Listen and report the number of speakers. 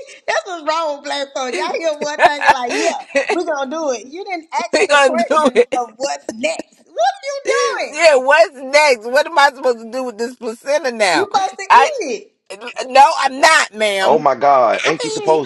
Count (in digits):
3